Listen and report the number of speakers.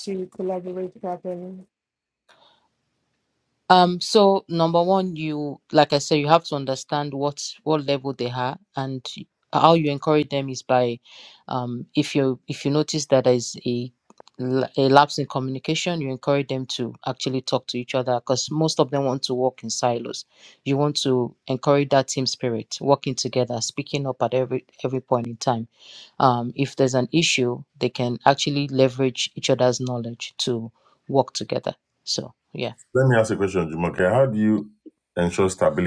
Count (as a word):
three